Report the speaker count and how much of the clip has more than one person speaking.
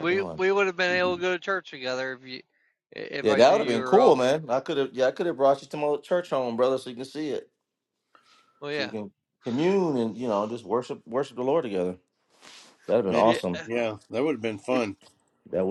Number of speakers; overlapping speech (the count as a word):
three, about 12%